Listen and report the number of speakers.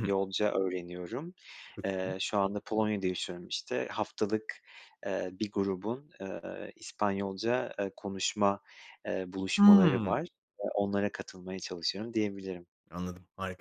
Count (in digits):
2